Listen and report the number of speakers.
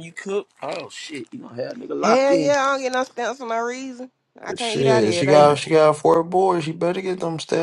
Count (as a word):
three